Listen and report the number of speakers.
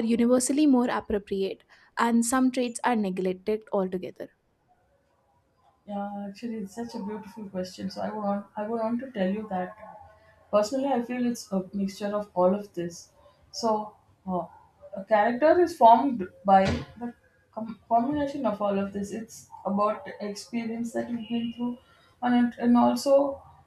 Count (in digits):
2